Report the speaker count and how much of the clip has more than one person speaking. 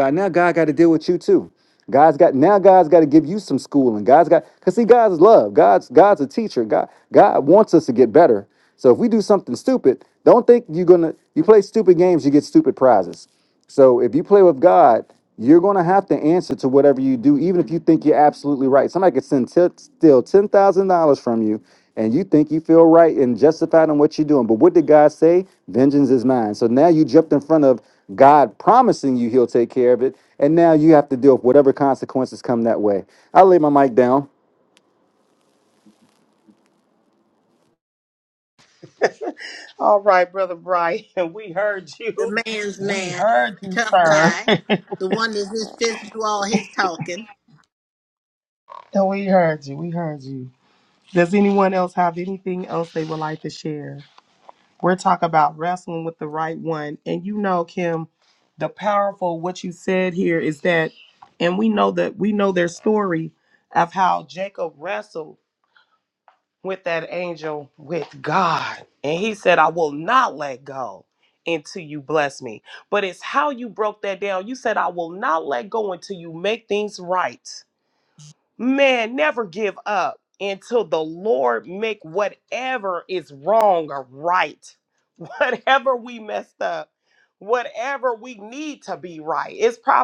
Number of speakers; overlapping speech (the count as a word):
three, about 2%